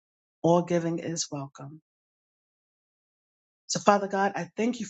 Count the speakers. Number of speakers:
1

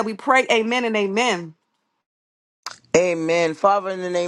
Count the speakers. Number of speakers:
2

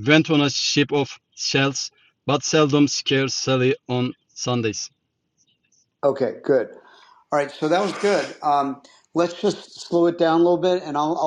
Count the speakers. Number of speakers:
2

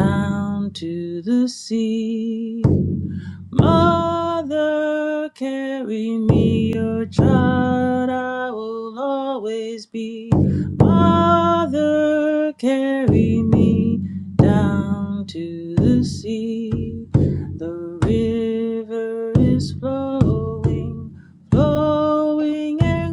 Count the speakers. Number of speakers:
1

